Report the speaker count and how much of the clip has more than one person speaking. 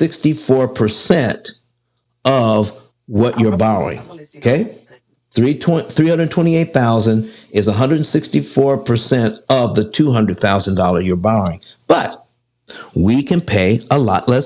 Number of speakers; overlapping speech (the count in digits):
2, about 8%